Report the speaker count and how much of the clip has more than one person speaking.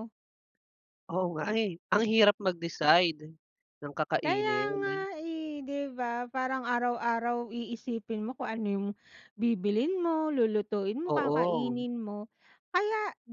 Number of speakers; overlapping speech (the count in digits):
2, about 12%